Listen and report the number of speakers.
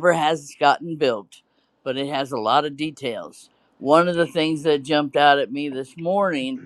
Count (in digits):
1